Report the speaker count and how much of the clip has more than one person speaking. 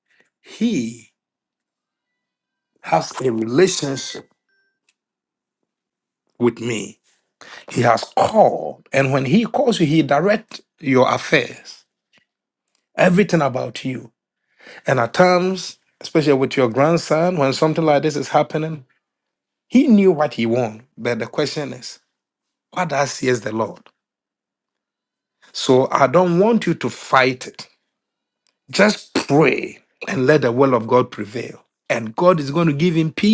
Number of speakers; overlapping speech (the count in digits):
1, no overlap